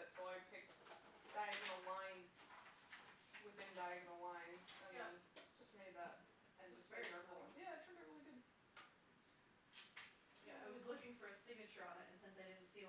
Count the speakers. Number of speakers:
two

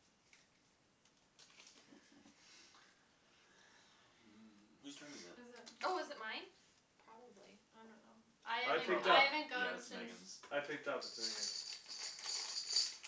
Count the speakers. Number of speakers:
four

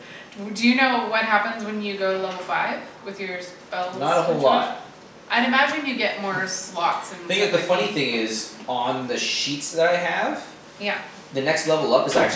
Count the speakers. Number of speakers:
two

